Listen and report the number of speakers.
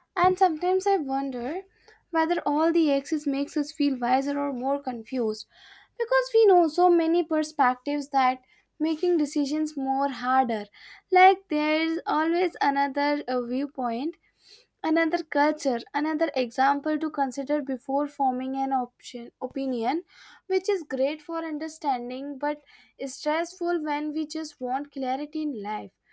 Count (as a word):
one